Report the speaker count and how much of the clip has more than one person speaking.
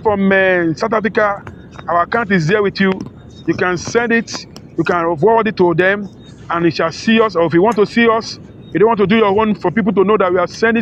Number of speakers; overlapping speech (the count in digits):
1, no overlap